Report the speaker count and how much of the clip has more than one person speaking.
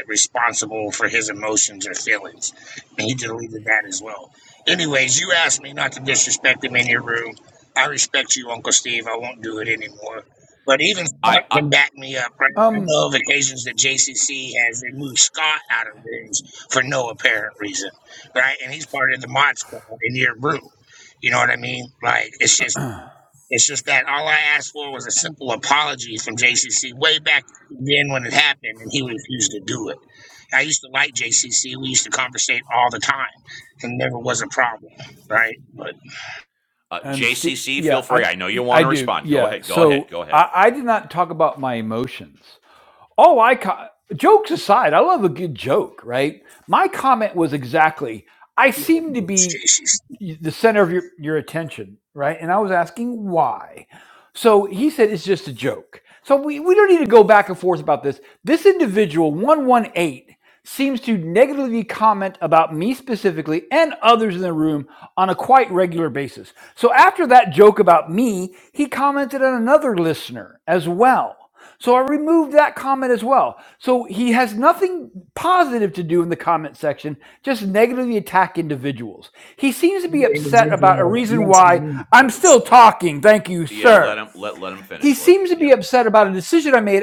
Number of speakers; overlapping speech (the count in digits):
3, about 9%